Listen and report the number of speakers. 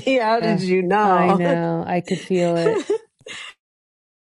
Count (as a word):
two